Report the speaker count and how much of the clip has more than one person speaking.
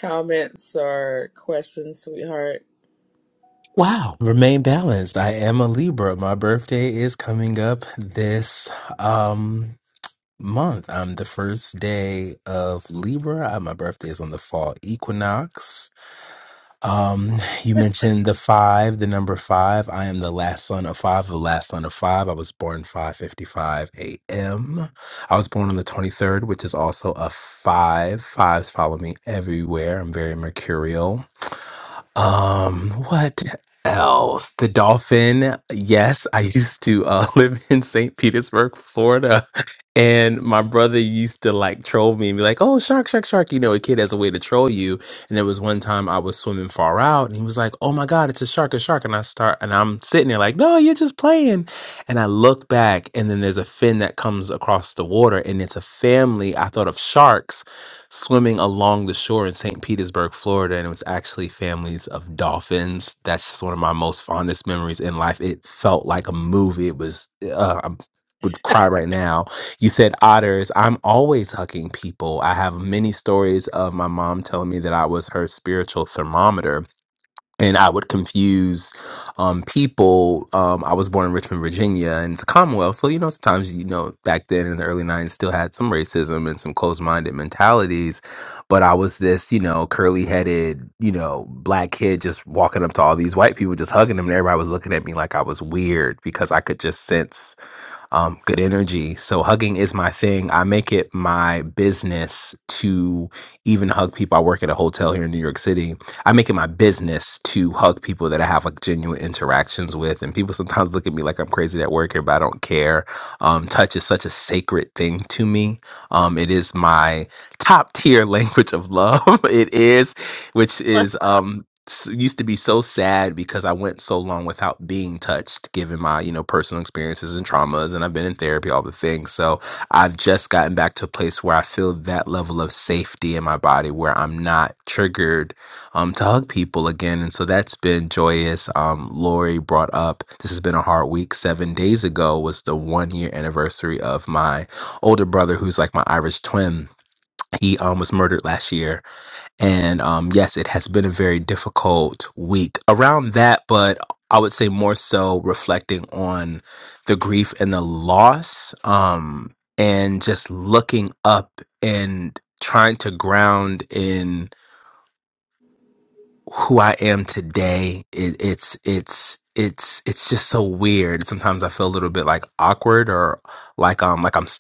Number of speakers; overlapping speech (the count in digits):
2, no overlap